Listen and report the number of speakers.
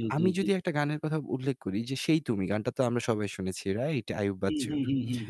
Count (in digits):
2